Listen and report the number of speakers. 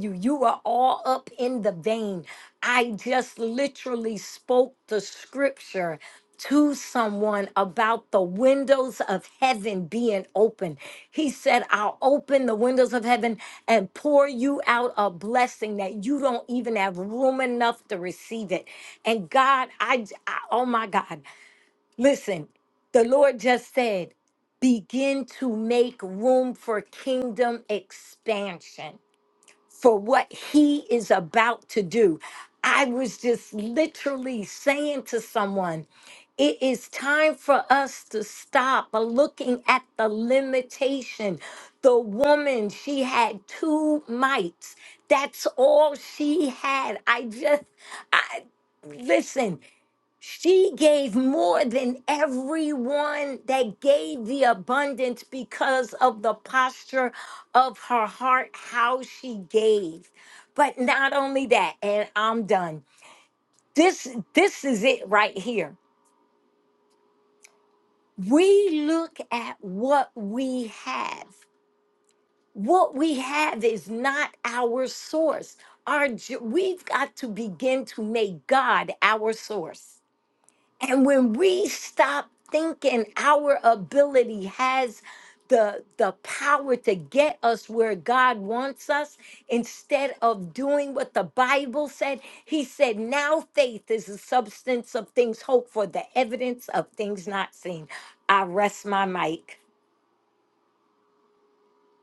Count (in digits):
1